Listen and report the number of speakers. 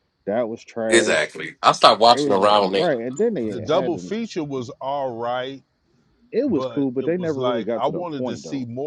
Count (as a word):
three